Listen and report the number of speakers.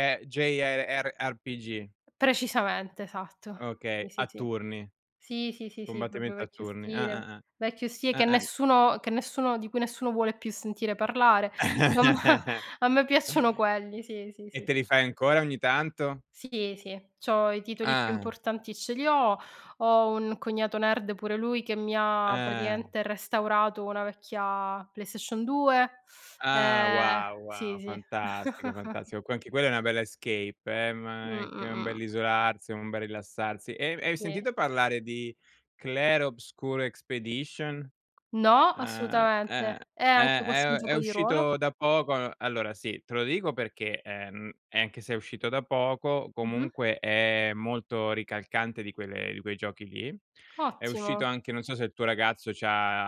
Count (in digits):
2